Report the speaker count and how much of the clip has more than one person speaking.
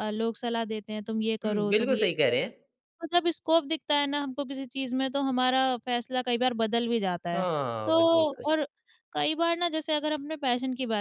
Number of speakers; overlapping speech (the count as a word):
two, about 11%